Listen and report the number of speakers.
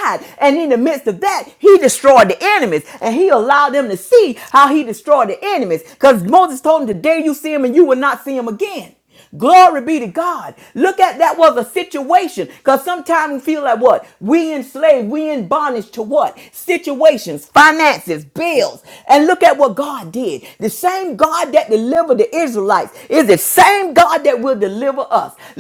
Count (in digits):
1